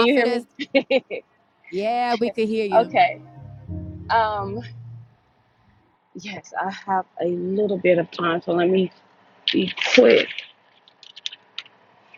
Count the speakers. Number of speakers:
2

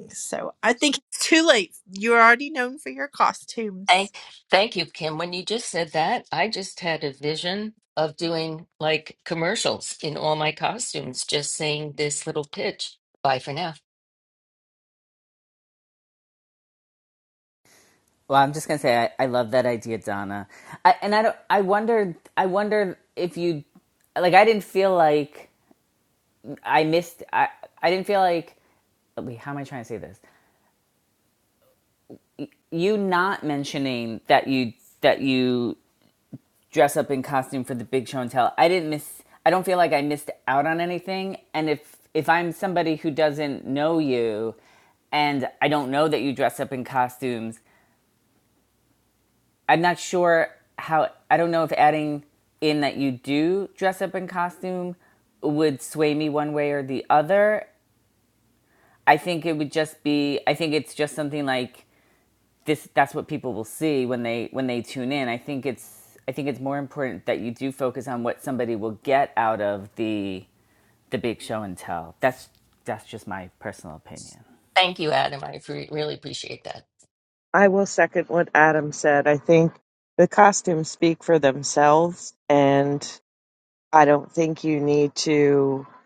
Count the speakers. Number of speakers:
4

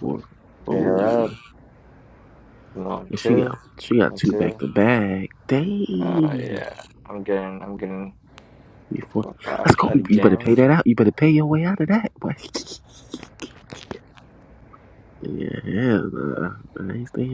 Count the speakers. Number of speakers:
2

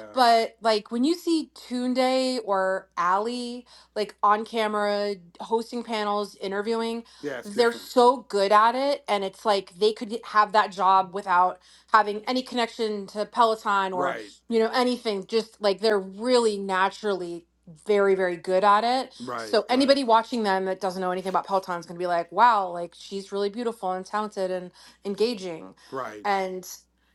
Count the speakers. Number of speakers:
2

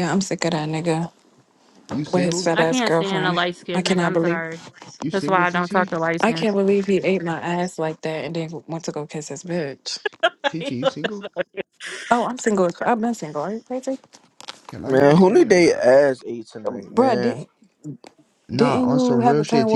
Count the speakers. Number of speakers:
4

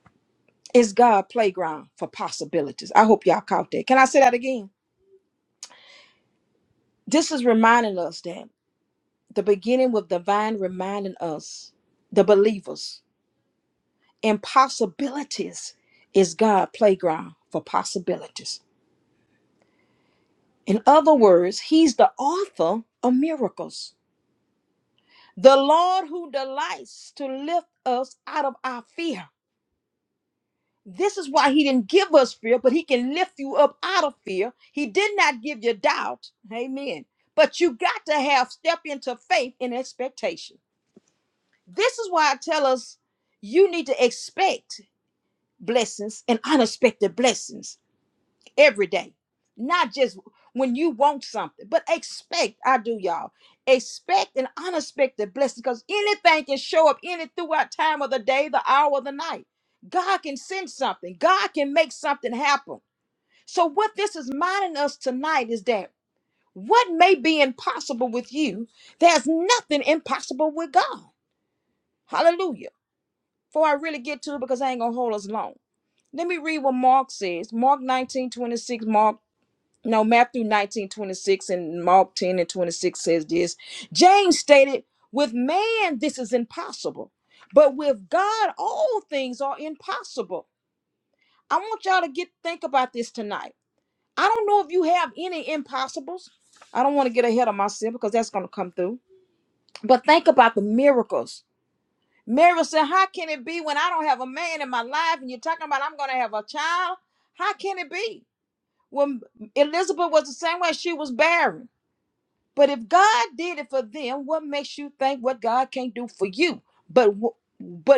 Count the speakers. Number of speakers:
1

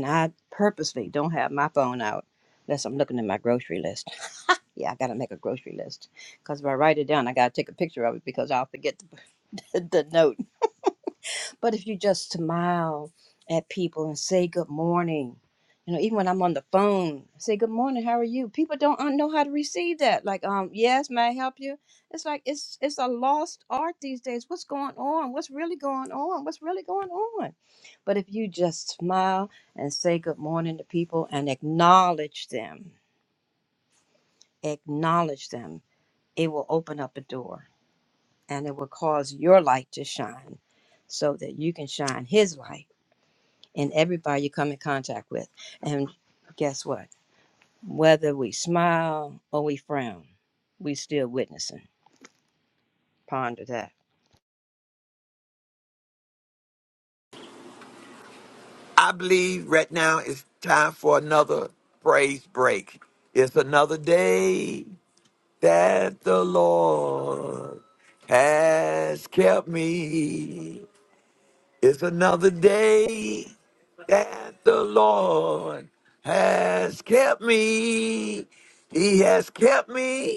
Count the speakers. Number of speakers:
2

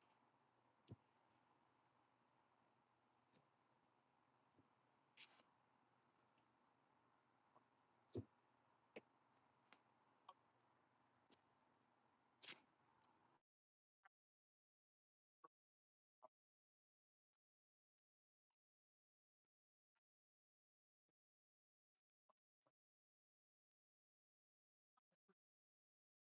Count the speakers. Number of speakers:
0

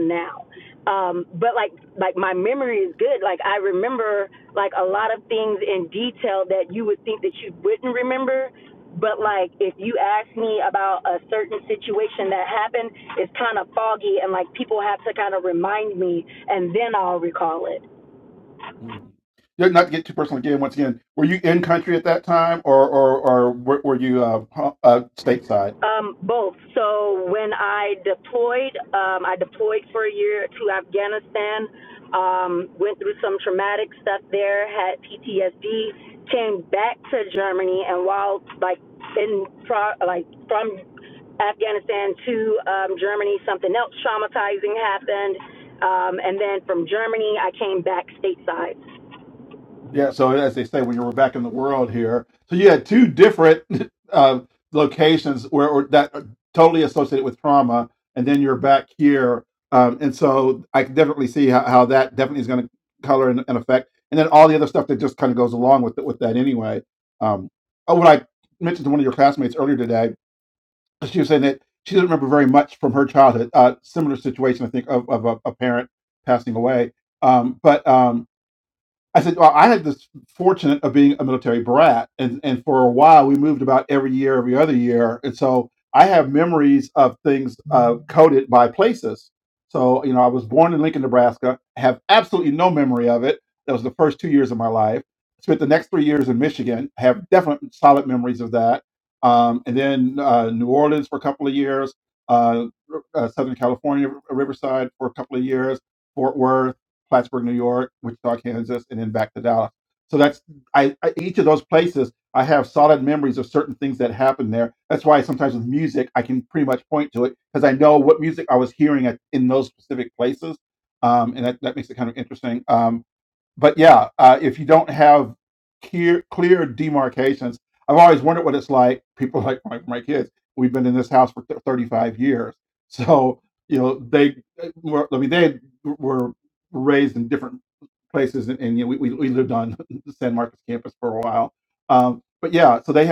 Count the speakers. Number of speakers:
2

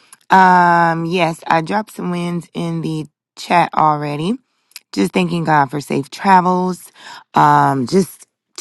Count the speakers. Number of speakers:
1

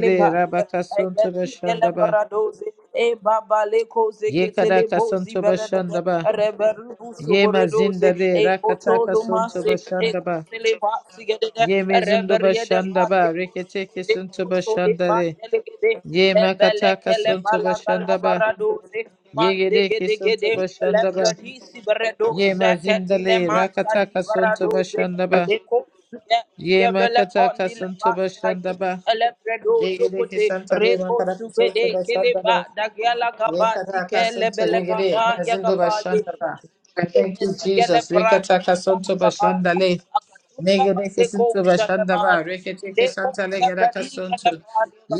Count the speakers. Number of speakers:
2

